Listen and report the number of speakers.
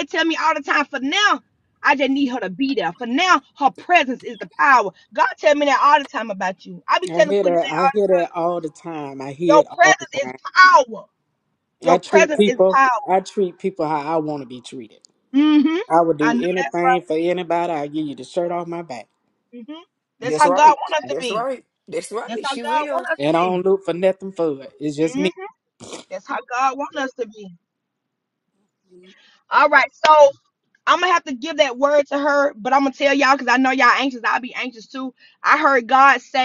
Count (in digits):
3